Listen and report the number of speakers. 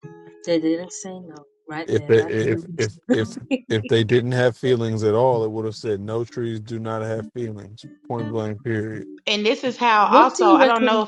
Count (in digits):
3